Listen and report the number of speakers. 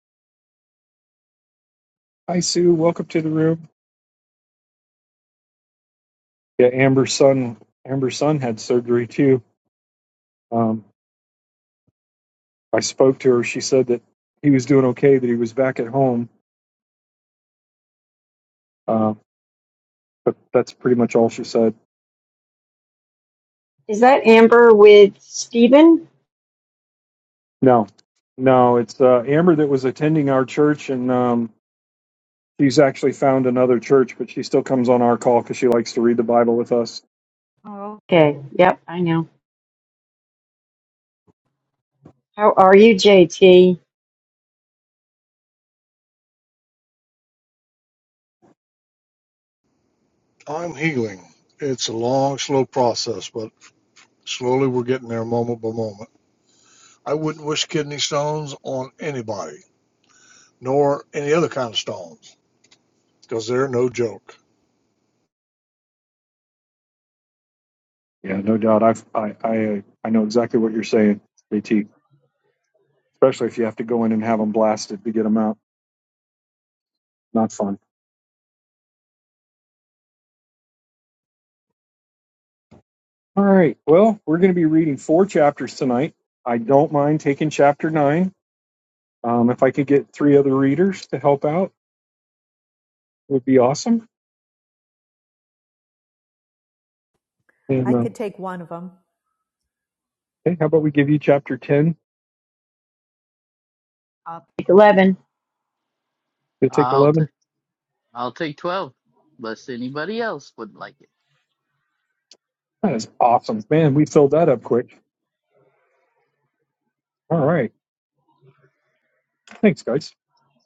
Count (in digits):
5